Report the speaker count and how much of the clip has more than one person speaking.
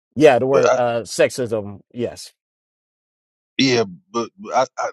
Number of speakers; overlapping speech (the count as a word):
two, about 6%